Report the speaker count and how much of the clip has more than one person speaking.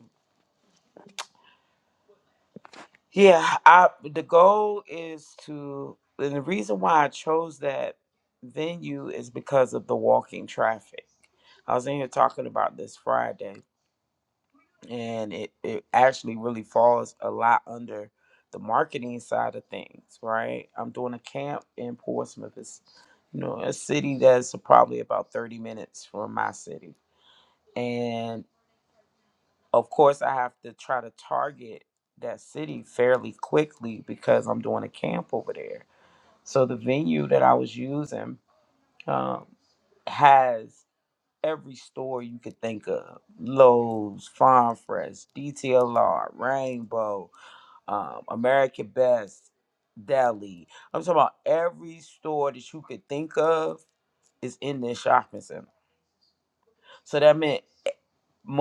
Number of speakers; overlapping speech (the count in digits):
1, no overlap